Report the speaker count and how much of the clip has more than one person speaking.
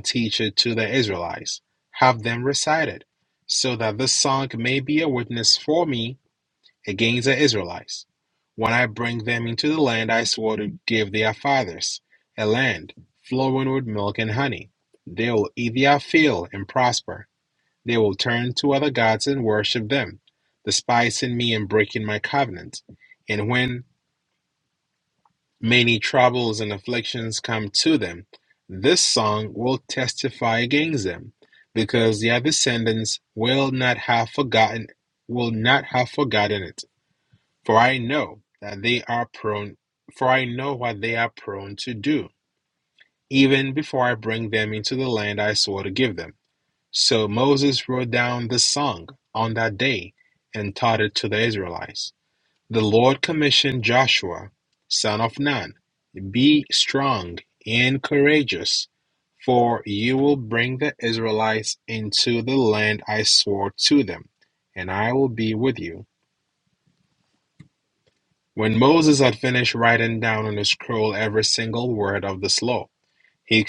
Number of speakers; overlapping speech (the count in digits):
1, no overlap